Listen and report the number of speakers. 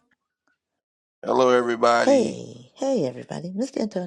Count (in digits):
2